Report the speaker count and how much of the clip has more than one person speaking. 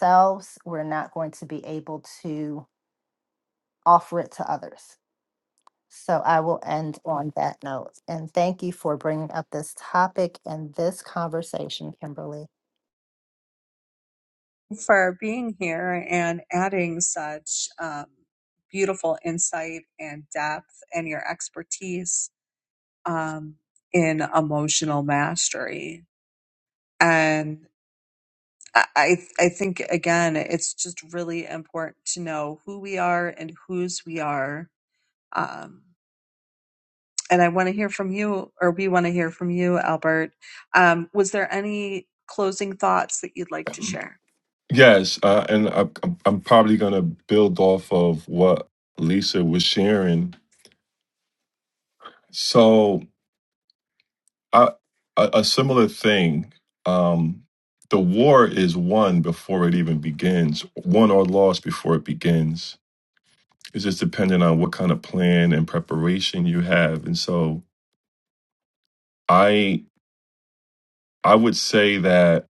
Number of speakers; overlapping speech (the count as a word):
three, no overlap